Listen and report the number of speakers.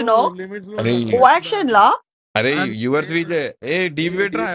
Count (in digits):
3